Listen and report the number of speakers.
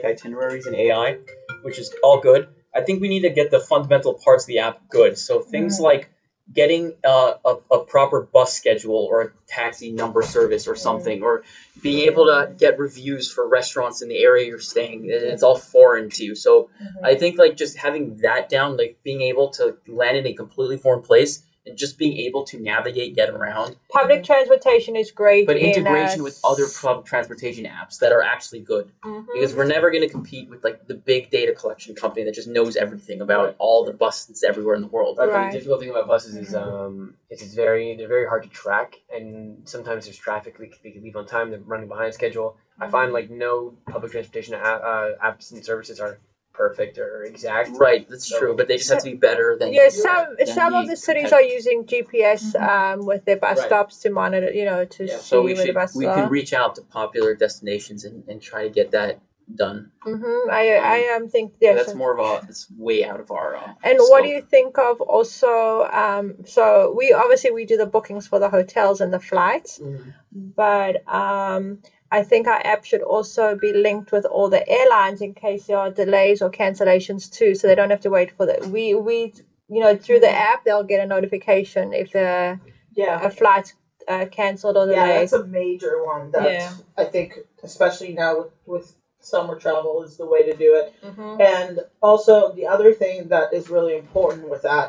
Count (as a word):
four